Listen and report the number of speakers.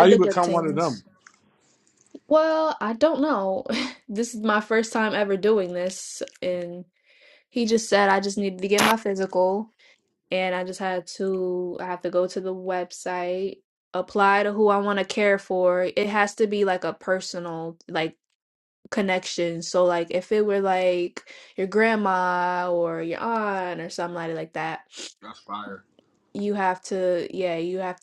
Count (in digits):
2